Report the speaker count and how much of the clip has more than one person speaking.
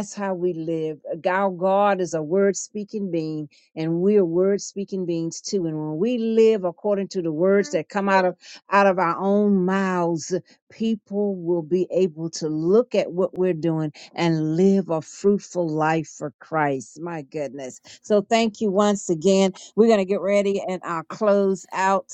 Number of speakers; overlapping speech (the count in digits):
1, no overlap